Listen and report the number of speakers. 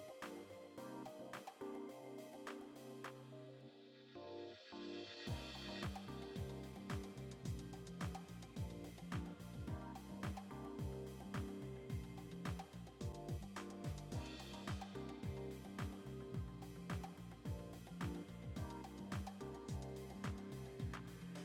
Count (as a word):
zero